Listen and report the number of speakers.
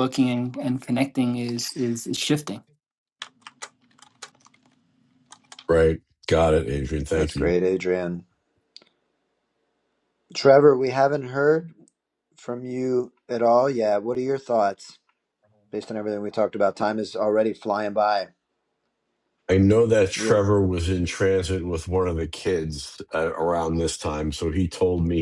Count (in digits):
3